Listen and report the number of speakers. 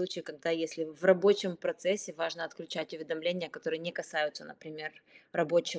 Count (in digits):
1